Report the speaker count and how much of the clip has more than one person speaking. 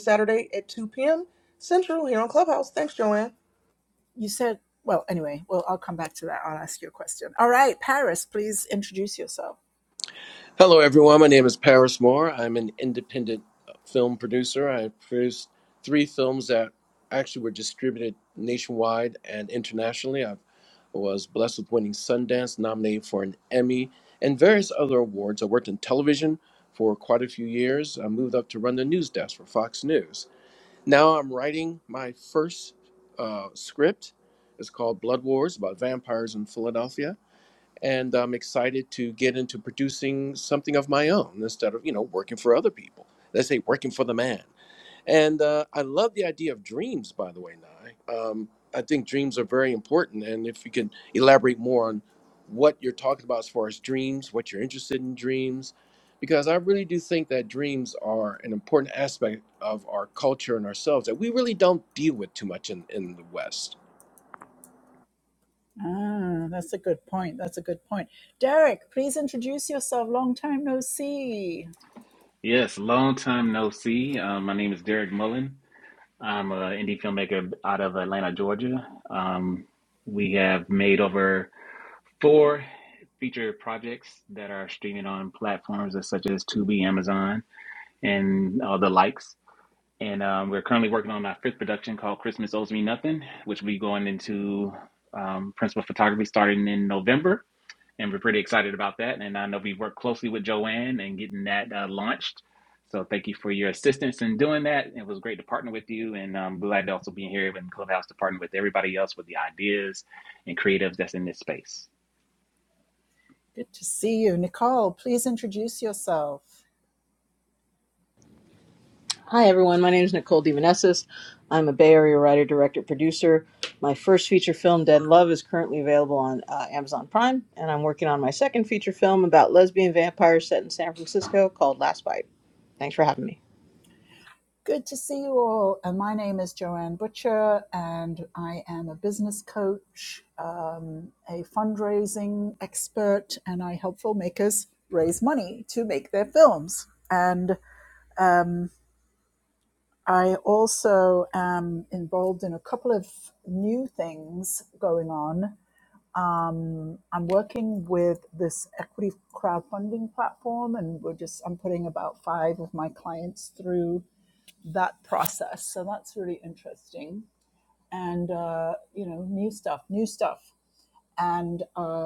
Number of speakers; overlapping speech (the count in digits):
5, no overlap